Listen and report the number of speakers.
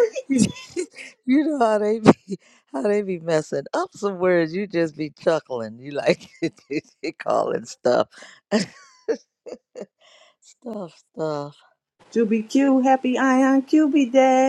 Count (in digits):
2